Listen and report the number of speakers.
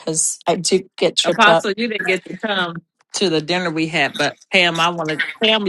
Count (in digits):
2